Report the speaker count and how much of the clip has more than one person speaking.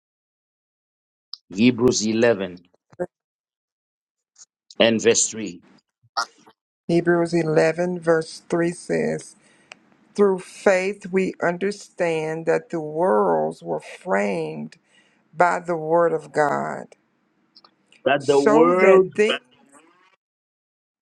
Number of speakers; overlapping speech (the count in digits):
2, about 4%